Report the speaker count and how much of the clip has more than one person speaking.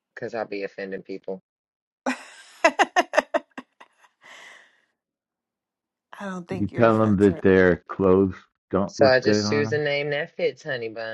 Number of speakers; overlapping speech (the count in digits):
3, about 15%